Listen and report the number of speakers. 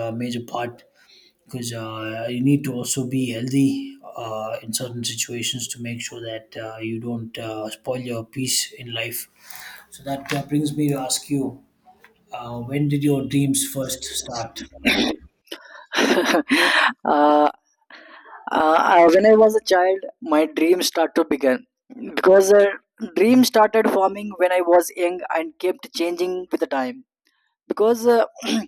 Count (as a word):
two